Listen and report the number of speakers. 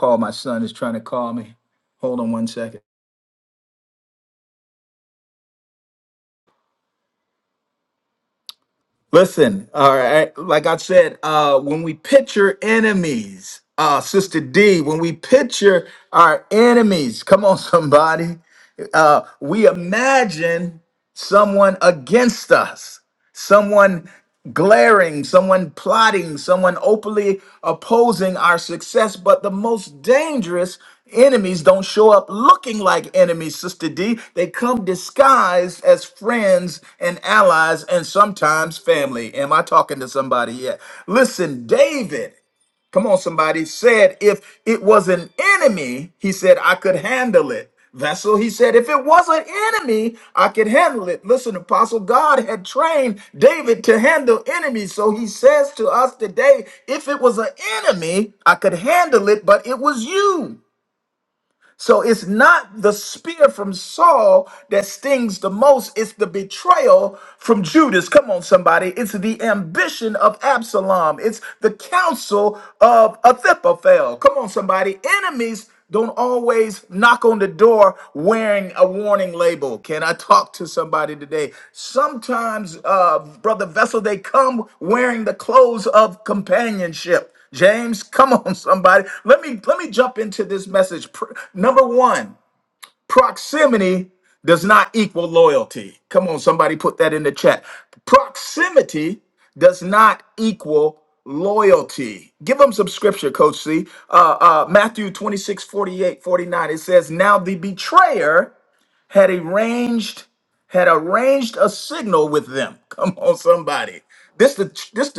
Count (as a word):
one